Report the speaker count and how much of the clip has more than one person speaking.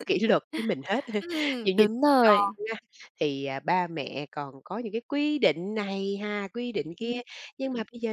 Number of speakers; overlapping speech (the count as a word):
two, about 11%